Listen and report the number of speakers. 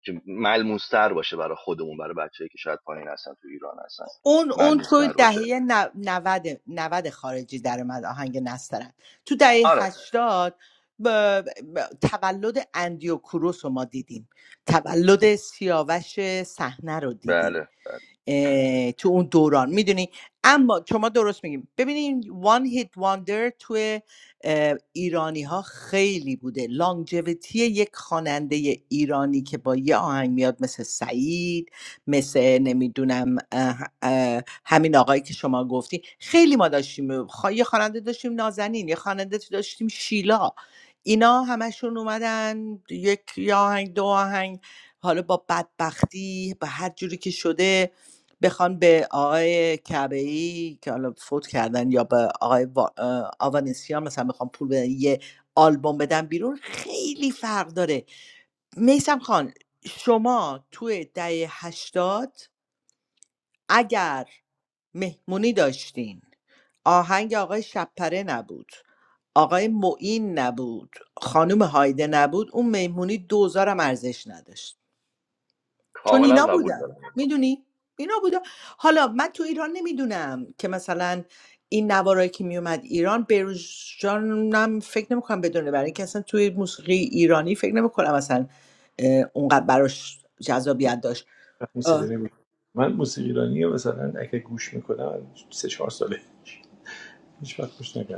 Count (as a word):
three